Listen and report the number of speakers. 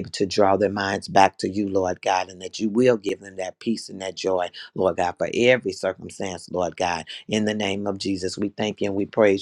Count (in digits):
1